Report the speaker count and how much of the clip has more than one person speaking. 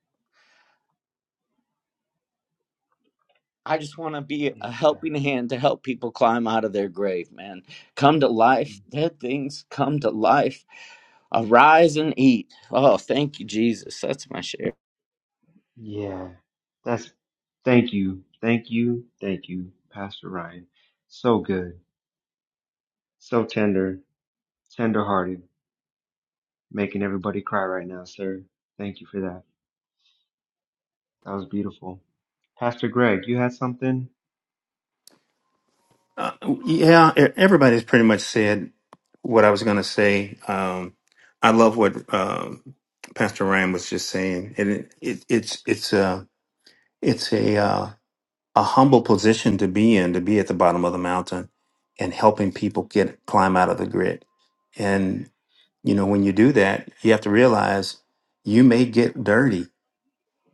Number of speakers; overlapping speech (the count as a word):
three, under 1%